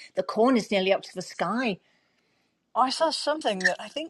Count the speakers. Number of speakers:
two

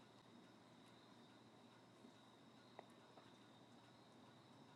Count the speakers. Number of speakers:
zero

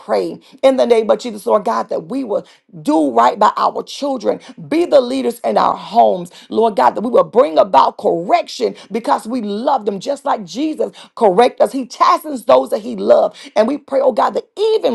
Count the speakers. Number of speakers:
one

